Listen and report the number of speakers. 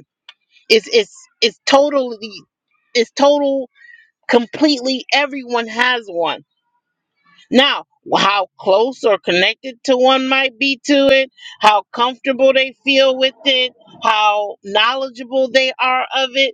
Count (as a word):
one